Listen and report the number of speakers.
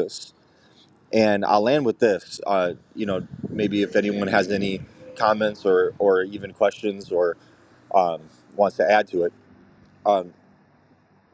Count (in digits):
1